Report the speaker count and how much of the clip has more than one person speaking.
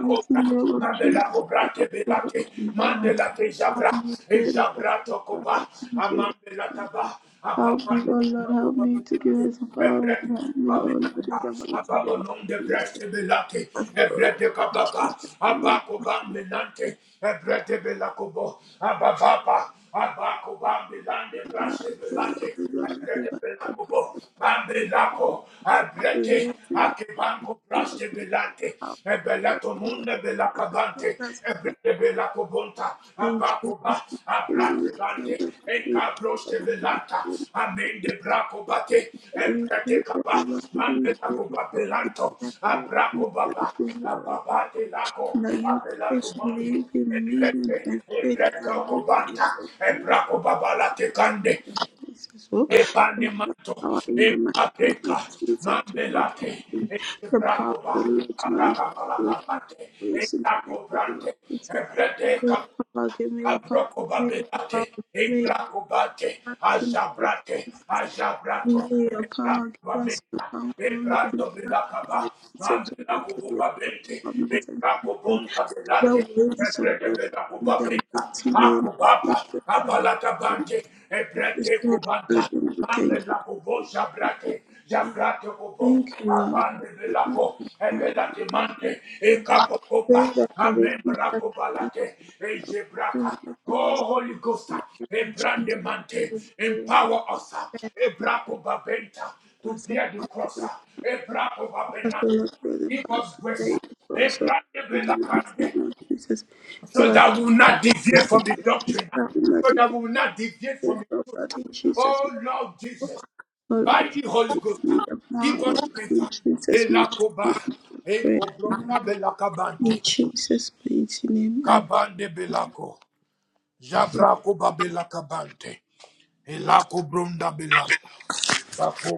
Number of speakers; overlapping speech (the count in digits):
2, about 37%